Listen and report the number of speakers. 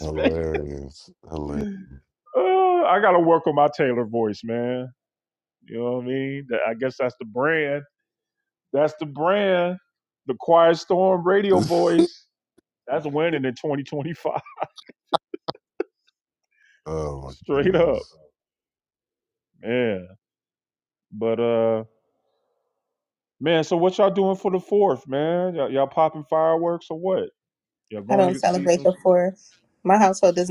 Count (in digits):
3